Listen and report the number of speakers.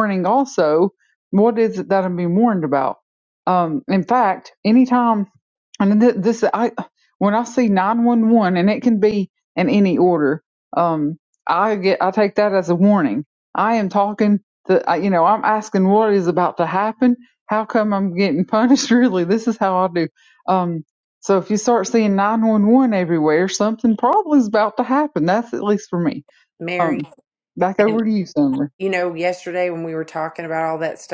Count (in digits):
2